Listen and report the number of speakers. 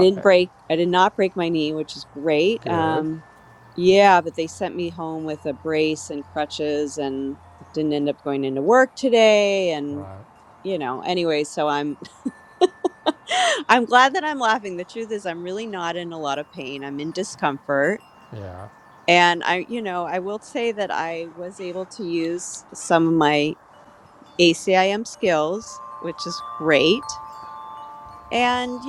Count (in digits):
2